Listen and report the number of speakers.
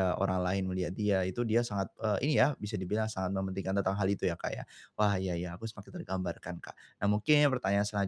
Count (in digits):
1